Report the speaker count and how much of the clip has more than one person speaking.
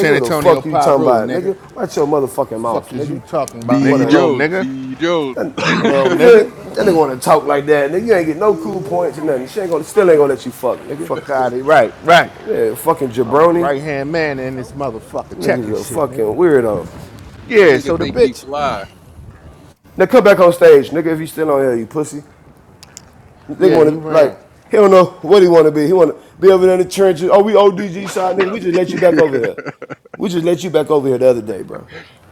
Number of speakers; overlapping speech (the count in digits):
3, about 19%